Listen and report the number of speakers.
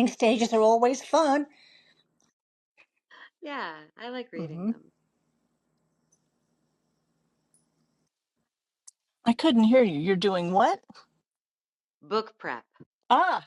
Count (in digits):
3